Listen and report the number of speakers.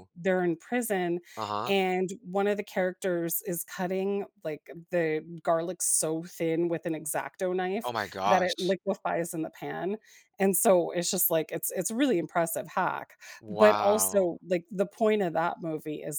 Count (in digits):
2